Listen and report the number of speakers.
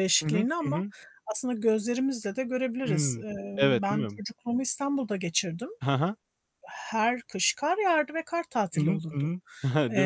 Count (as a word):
two